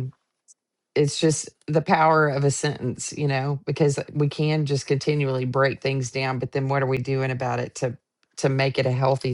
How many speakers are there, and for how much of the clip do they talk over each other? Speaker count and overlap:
one, no overlap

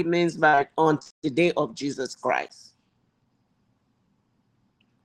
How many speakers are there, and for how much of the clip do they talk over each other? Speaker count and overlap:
one, no overlap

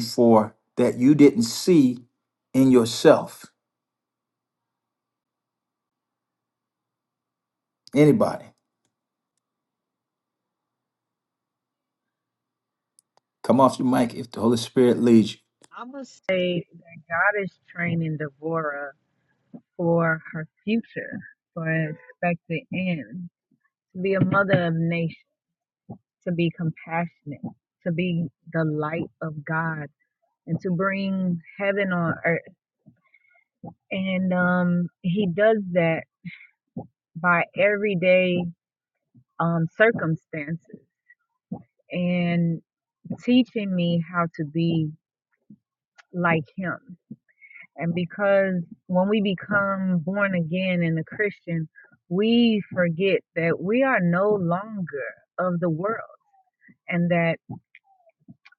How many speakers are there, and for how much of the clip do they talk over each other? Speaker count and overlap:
two, no overlap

